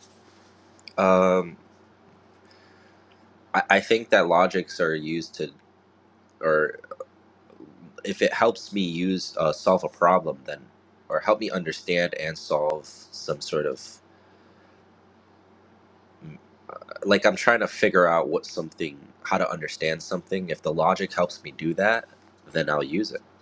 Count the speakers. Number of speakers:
one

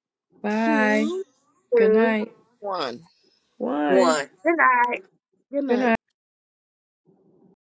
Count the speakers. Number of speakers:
three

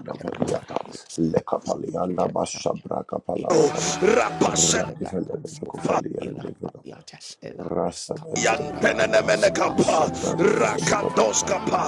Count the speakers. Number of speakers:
three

